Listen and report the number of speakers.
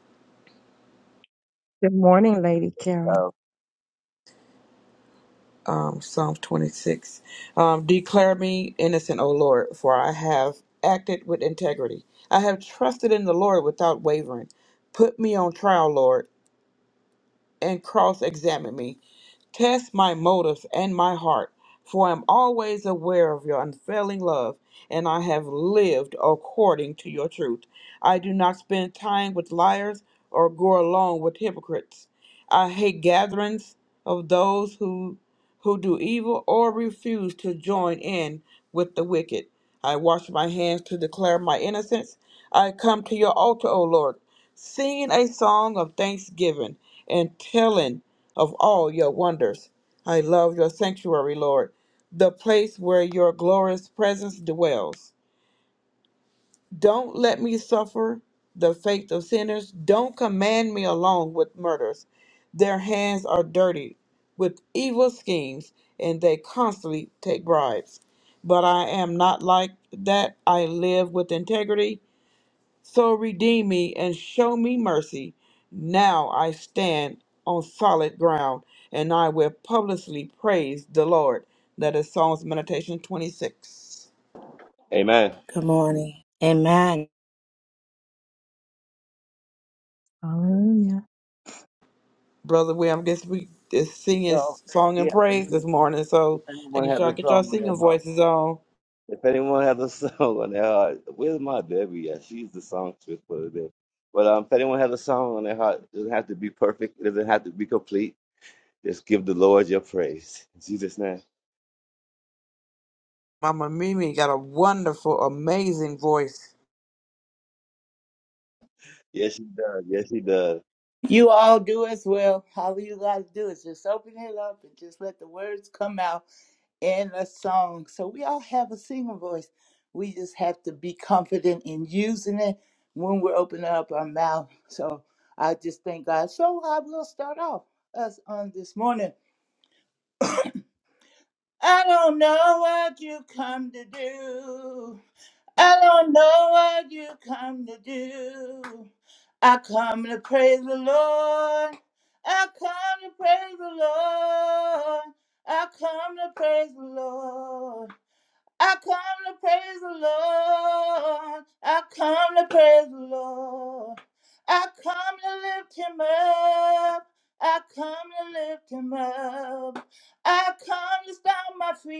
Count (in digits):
5